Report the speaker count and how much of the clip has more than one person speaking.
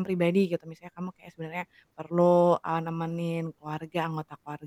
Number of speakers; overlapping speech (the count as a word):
one, no overlap